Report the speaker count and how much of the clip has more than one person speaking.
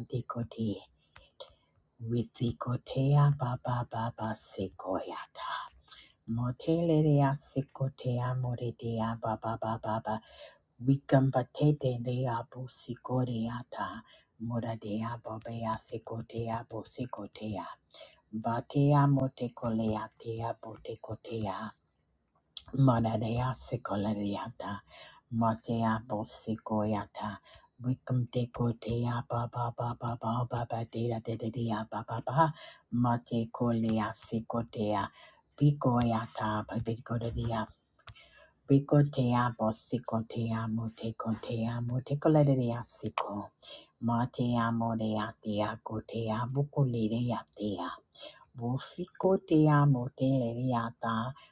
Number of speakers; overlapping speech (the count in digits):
1, no overlap